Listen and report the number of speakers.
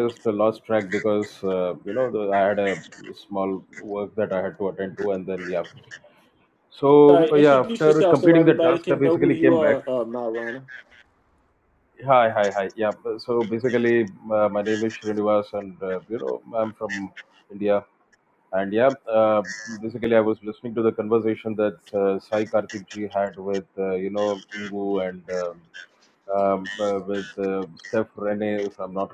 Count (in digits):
2